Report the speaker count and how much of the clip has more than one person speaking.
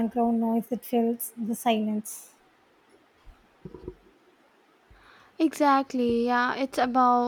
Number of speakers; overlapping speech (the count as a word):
two, no overlap